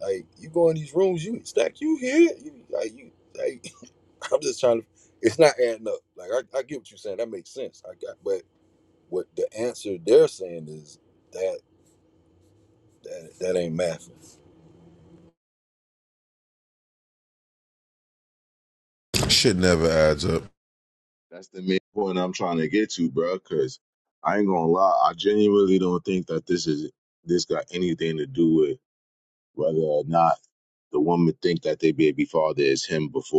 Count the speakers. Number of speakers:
three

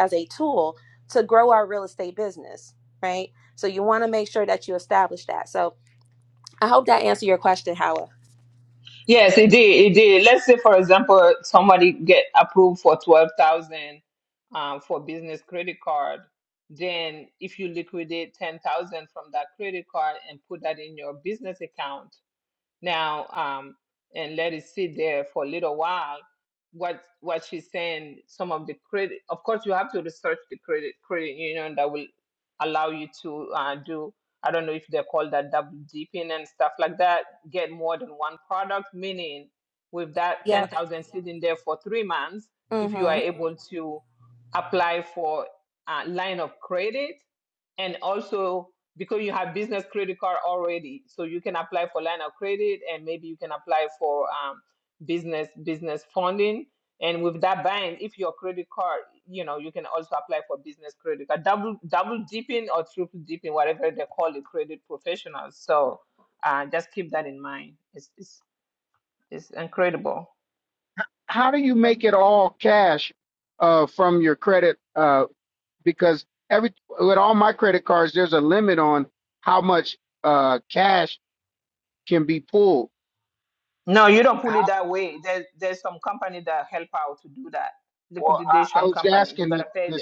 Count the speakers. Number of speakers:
three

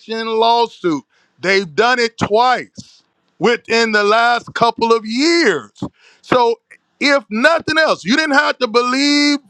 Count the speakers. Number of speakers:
one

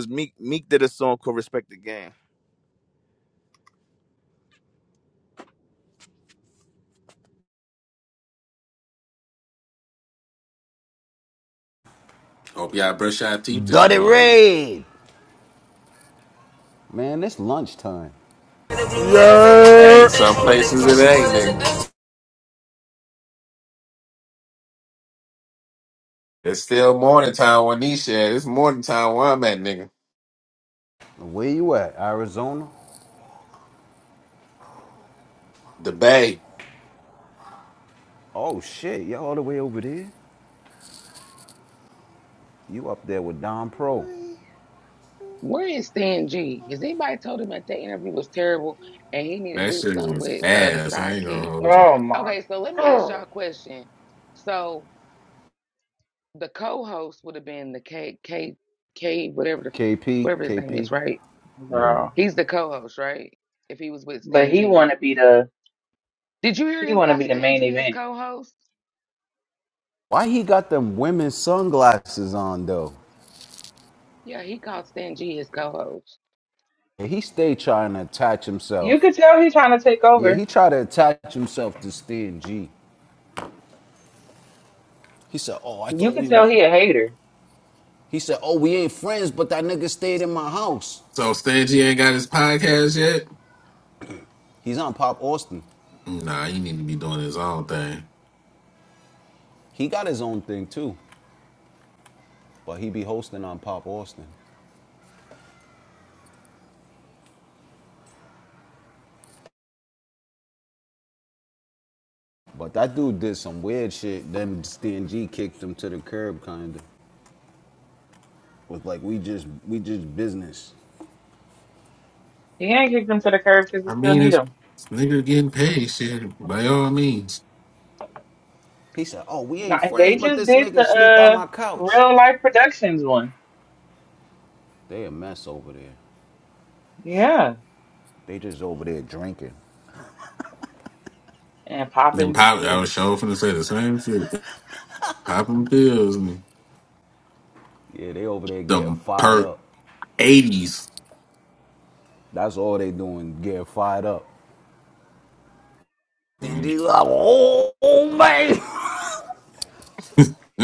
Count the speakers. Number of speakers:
six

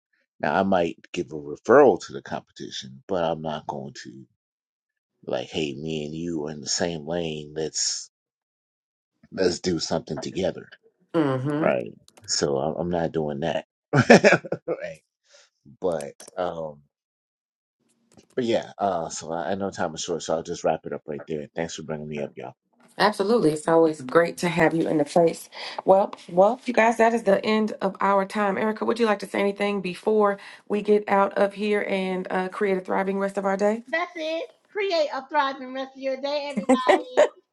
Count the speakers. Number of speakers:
three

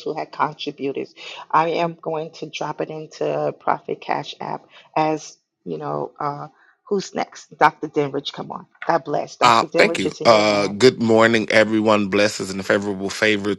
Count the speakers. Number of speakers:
two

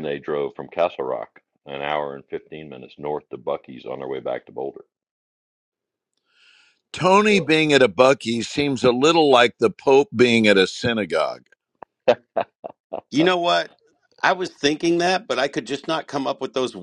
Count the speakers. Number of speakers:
three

